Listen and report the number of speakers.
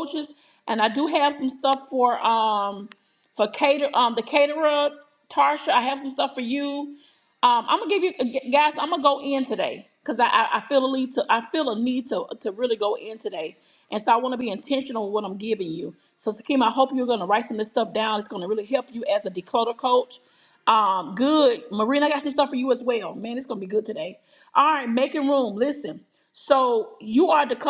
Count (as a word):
one